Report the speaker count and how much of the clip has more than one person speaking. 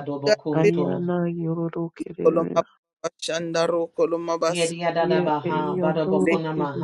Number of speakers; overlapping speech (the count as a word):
three, about 47%